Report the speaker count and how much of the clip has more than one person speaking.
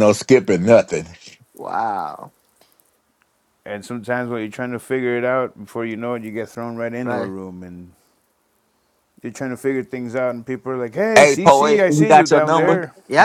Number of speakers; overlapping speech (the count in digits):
3, about 15%